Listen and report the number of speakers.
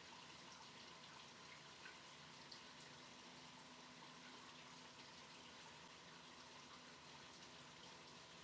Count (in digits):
0